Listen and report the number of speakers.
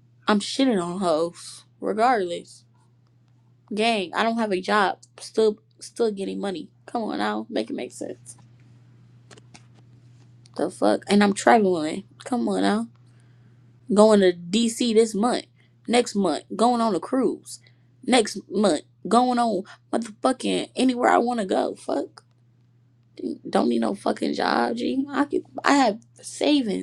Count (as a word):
one